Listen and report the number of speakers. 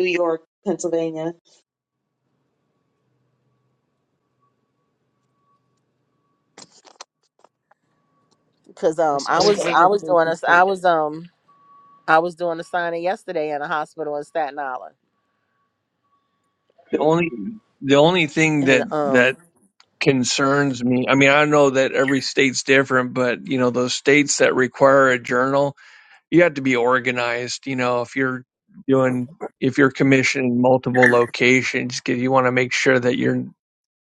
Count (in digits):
3